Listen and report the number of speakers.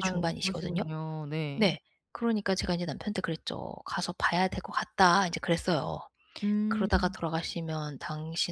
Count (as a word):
two